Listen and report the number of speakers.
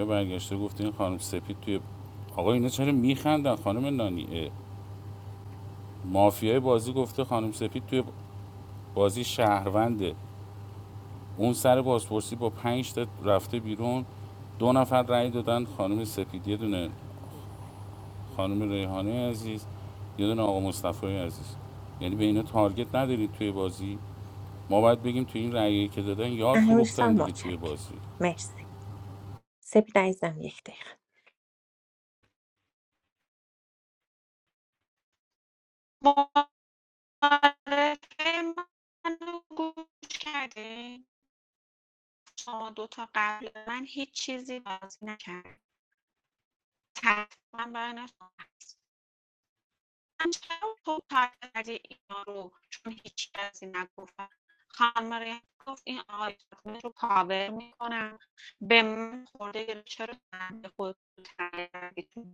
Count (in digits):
3